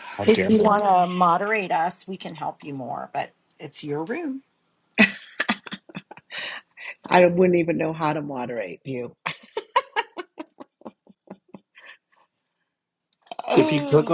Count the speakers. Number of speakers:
three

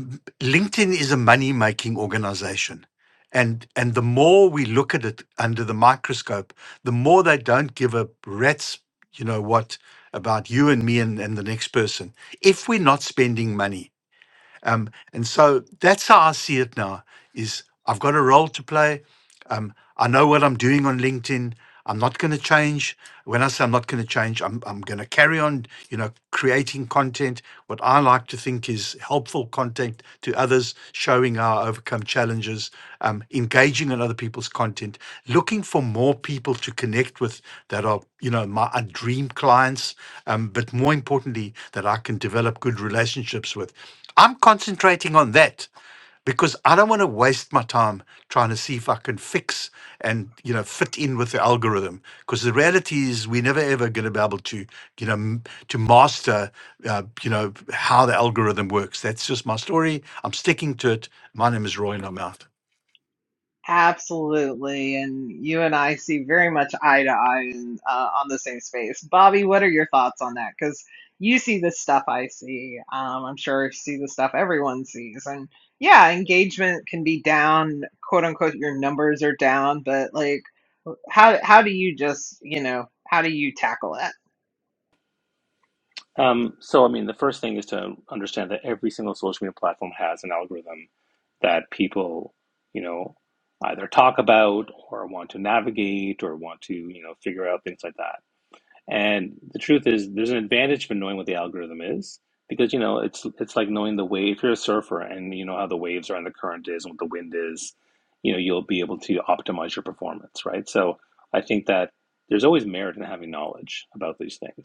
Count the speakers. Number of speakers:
three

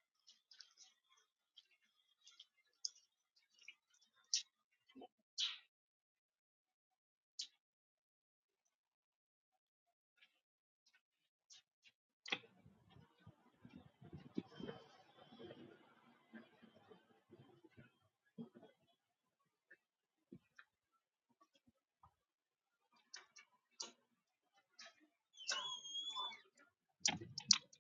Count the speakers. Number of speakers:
zero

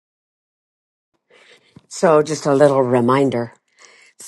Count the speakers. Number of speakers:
one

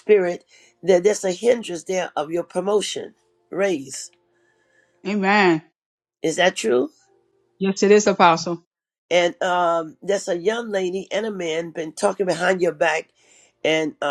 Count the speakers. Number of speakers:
two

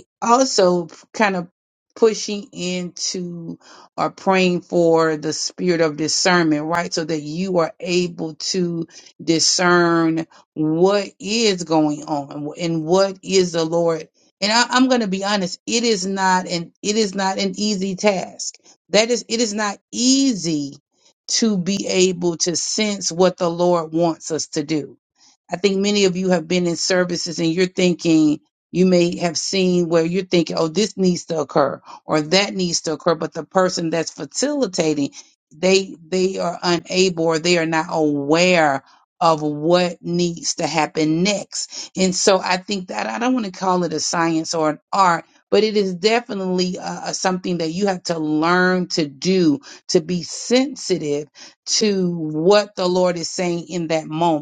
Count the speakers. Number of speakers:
one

